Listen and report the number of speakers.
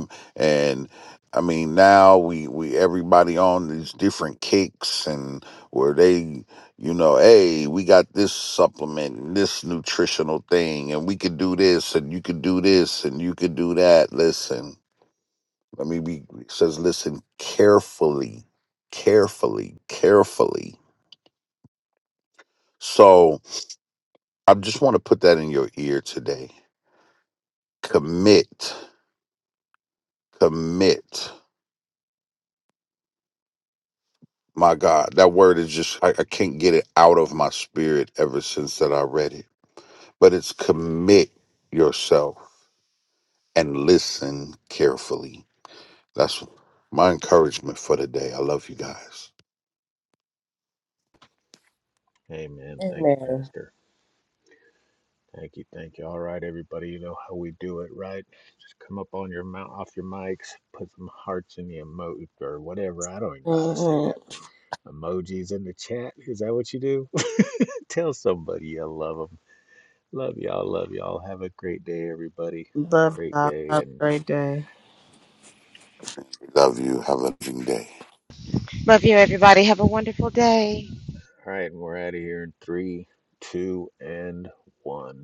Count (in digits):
4